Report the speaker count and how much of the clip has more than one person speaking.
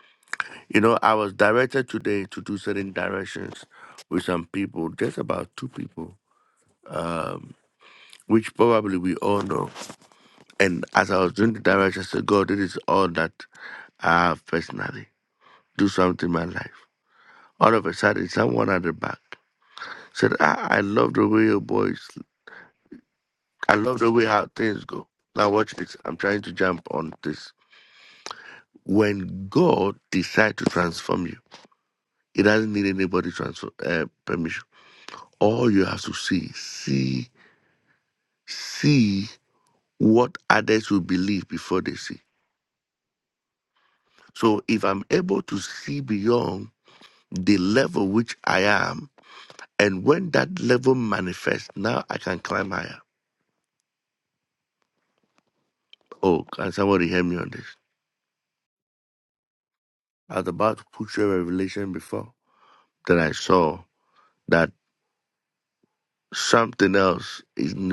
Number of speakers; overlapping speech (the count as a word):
one, no overlap